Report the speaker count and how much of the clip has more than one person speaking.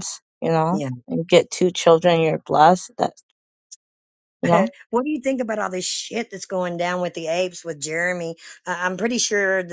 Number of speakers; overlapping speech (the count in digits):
2, about 1%